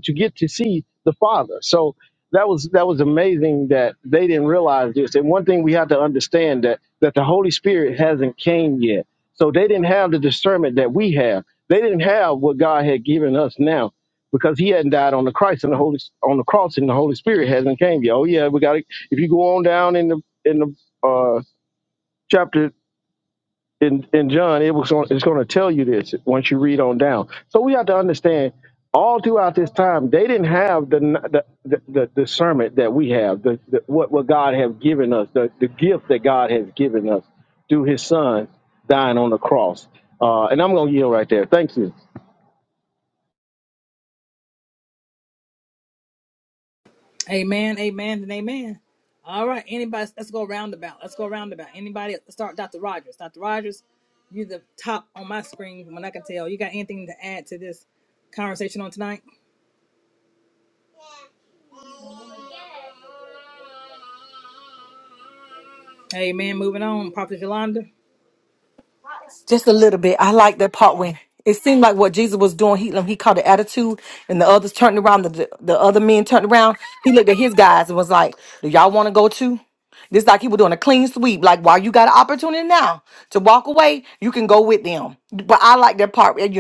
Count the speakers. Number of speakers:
three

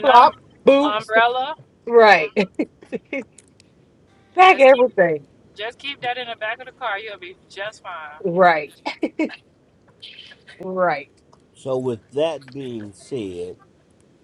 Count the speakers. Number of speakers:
three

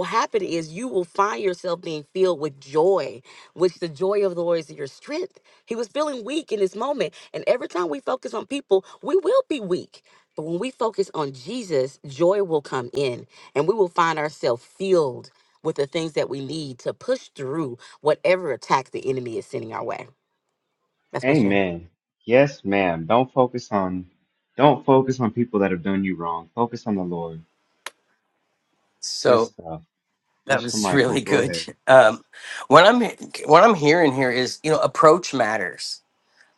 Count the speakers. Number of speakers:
three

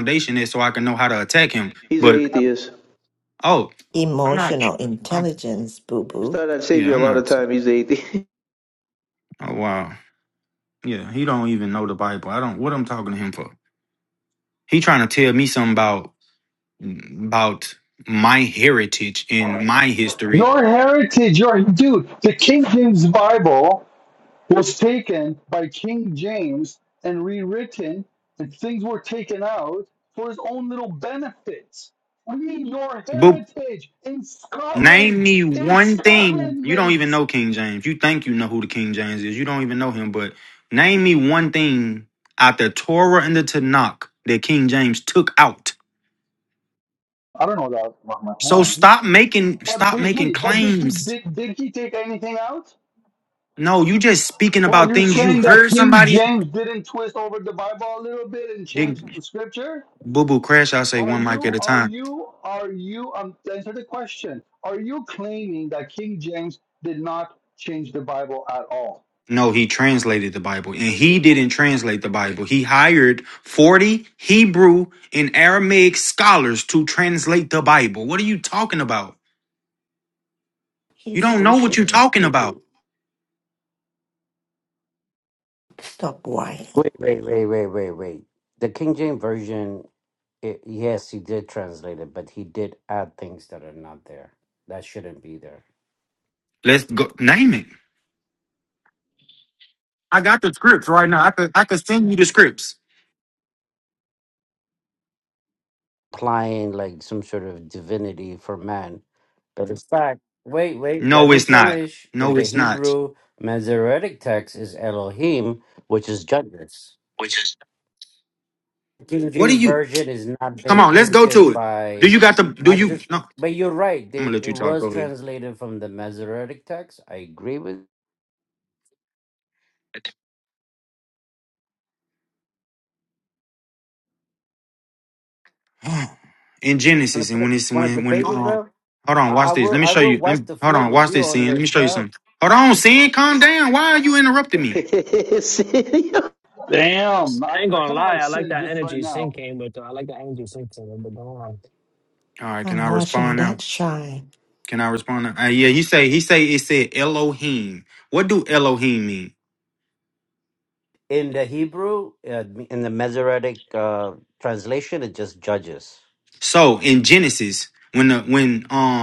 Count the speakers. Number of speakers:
six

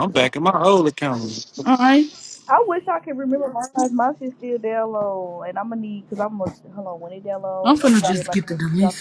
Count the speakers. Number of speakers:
three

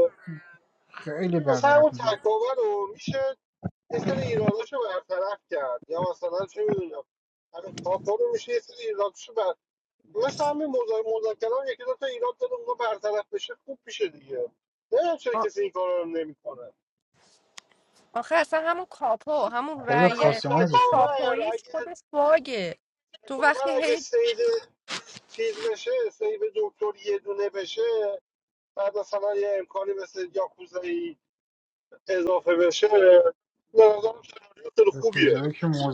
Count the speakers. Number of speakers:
three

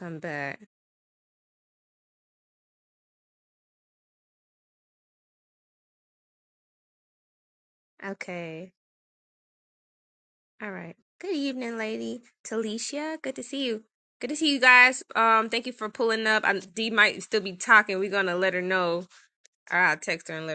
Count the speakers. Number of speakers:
one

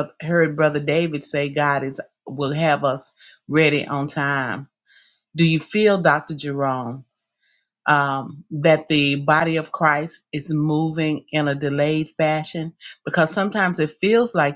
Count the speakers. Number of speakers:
one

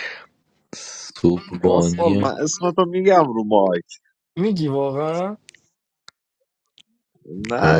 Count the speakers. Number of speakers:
three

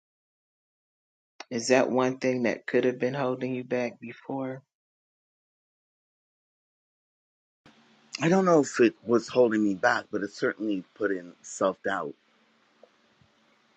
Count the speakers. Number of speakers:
two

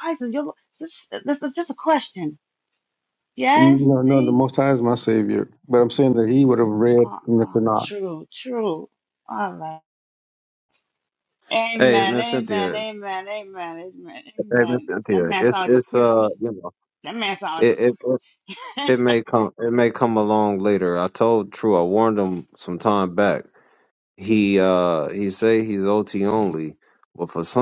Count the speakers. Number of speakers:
three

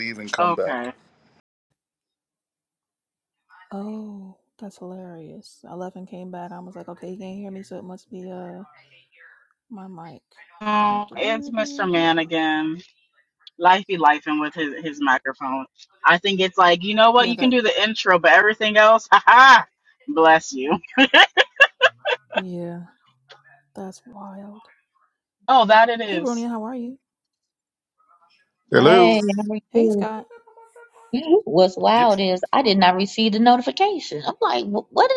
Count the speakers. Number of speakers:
four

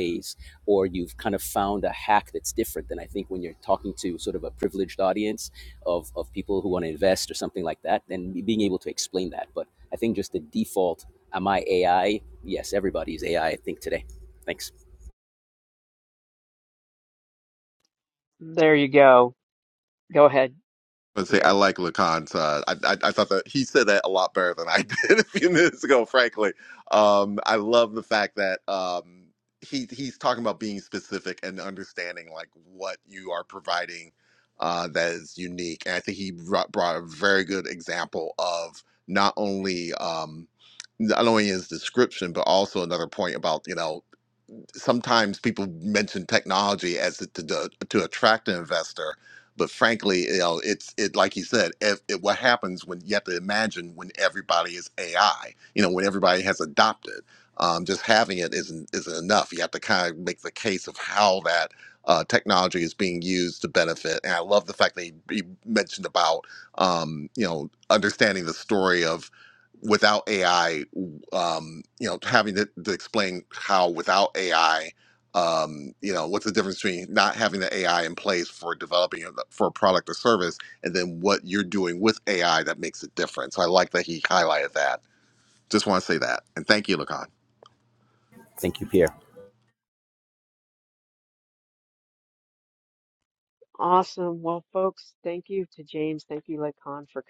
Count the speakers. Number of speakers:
three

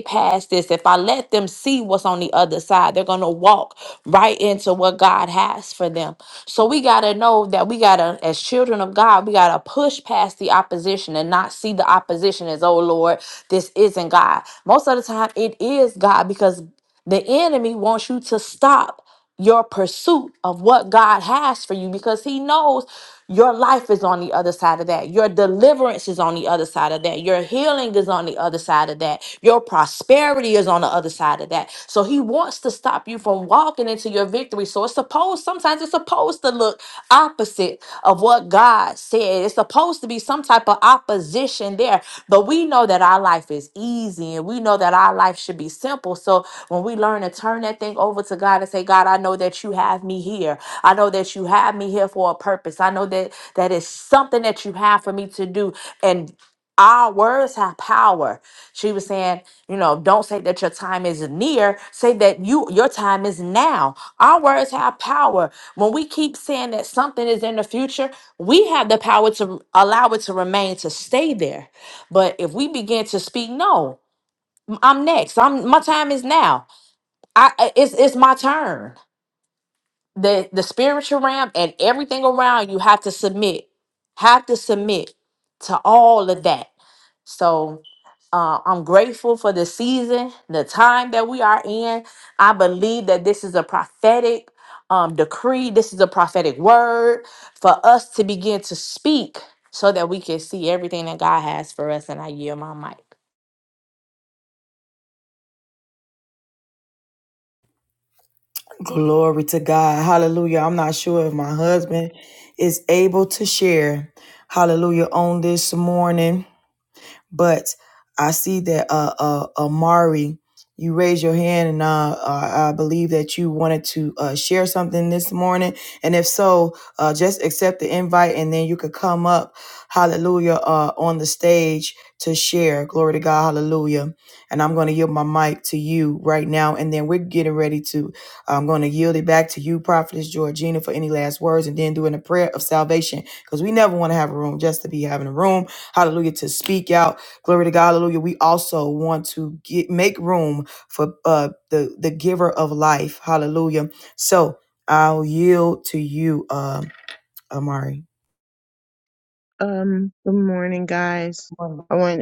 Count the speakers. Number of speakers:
three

